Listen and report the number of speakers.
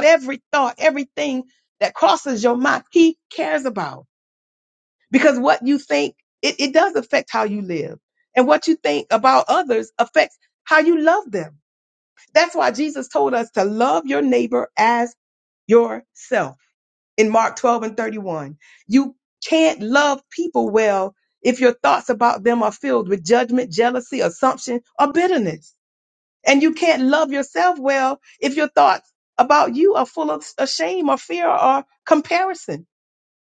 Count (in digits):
1